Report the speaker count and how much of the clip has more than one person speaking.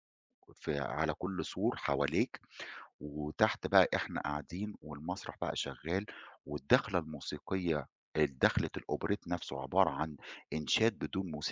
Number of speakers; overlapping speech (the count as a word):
one, no overlap